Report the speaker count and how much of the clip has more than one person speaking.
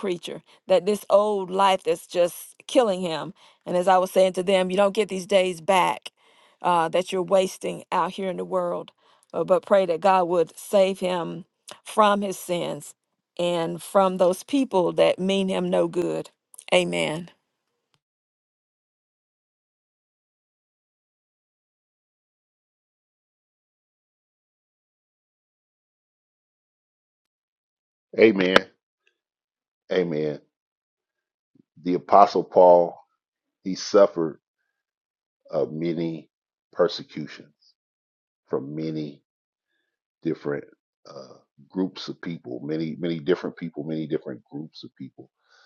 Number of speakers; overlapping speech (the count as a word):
two, no overlap